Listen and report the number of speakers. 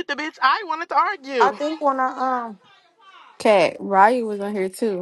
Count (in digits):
3